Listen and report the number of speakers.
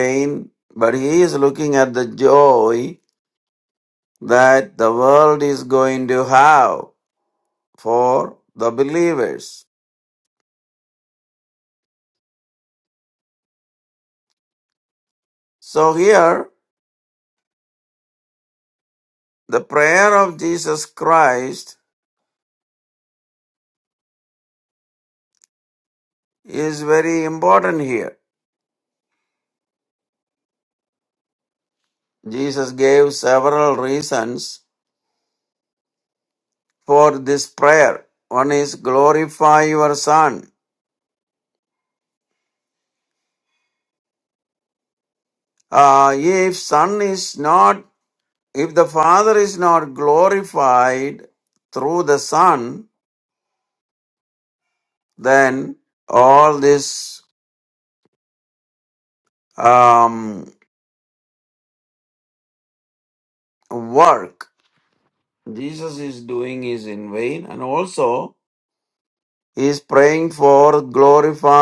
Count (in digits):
1